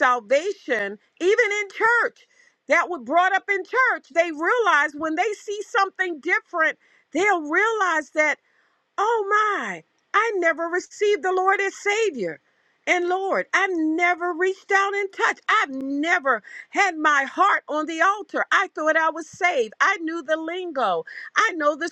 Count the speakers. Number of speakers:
one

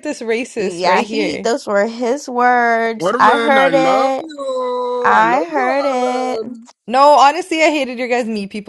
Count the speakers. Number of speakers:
three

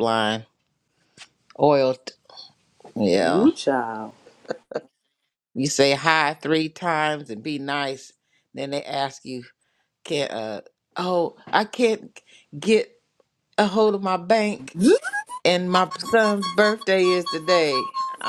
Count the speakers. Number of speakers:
two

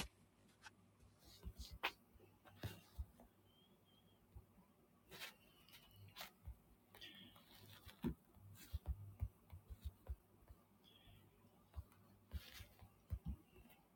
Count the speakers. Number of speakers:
zero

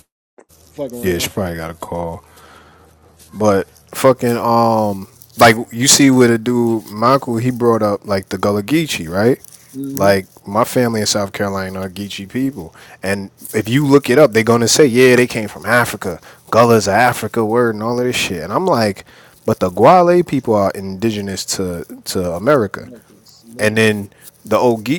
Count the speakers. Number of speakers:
two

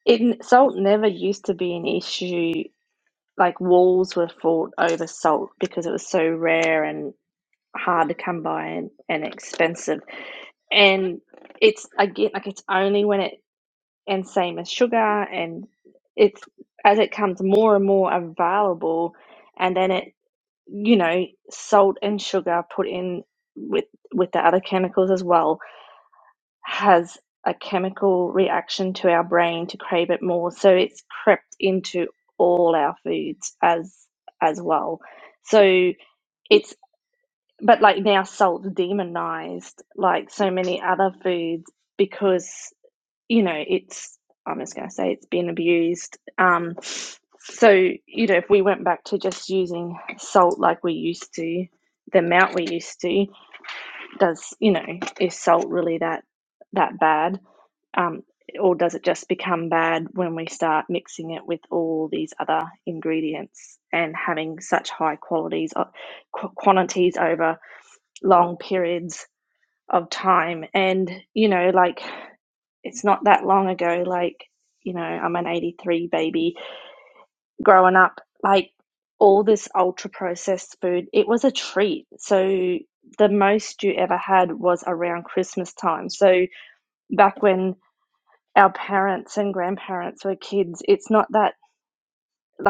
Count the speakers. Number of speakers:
one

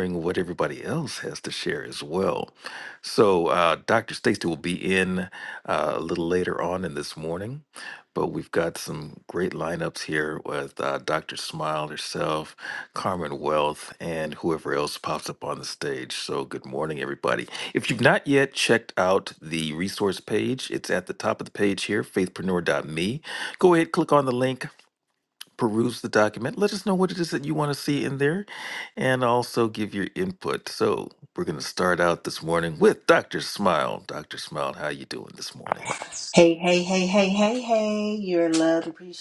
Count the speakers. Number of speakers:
two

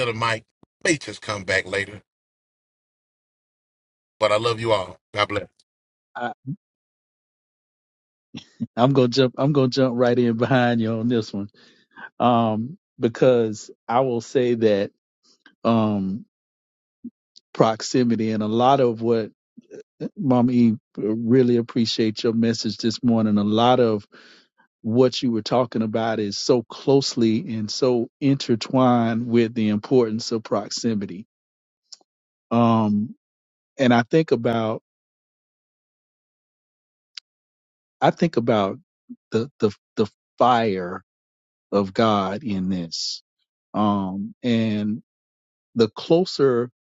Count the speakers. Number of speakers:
two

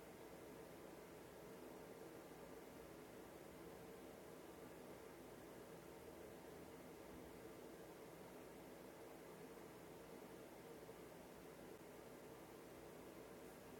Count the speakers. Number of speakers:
zero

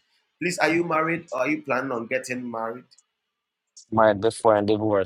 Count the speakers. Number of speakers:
two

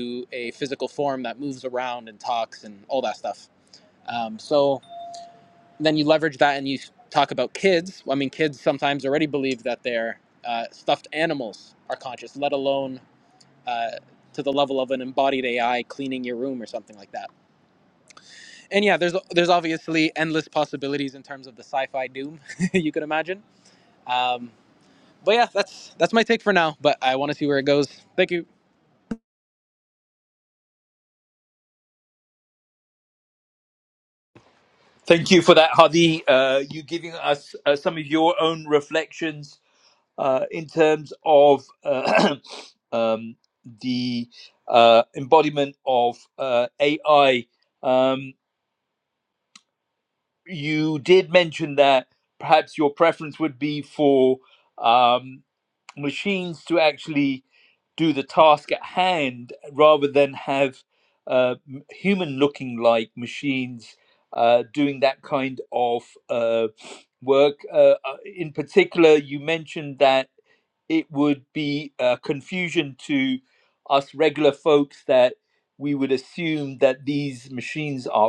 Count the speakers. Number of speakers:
two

